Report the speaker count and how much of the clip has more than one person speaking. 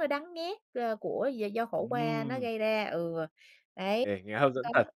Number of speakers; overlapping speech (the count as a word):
two, about 13%